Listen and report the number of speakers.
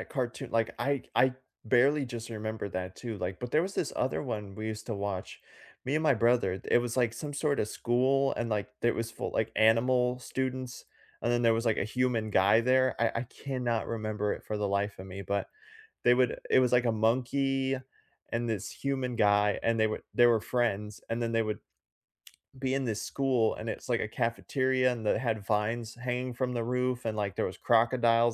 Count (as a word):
one